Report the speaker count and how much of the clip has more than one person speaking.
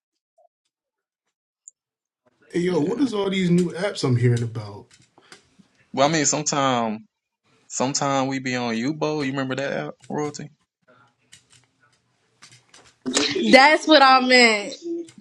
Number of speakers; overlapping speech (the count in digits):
3, about 3%